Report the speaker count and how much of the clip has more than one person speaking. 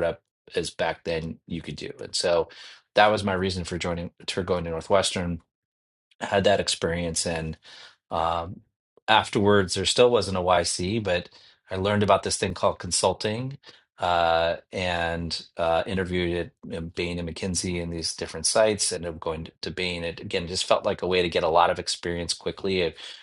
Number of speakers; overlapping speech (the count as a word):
one, no overlap